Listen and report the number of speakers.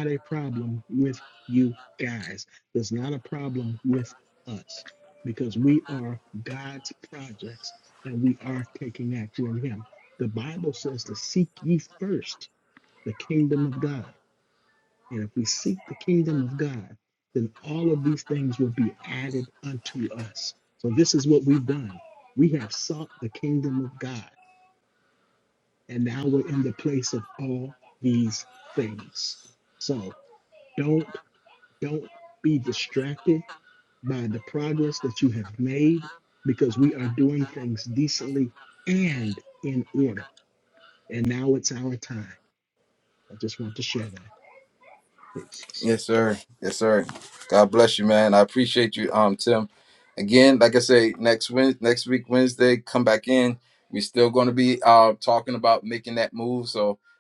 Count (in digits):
2